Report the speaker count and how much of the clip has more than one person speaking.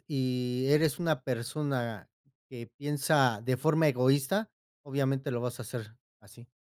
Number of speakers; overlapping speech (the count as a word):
one, no overlap